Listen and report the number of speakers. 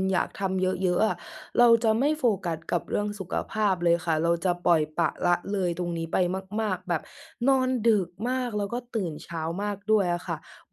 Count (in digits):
1